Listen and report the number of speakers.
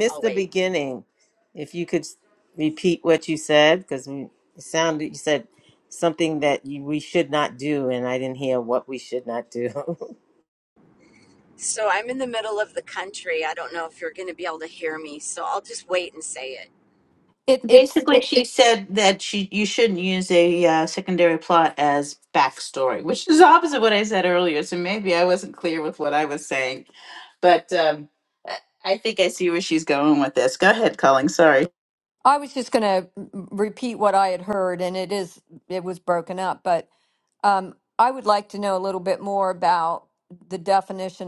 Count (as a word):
four